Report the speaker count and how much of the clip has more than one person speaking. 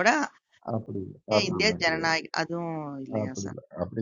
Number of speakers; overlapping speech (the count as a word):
two, about 29%